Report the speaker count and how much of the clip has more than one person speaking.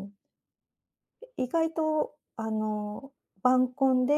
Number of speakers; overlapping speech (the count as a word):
one, no overlap